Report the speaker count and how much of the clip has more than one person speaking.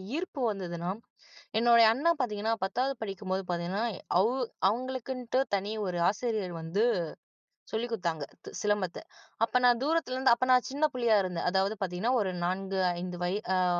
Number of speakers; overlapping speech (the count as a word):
one, no overlap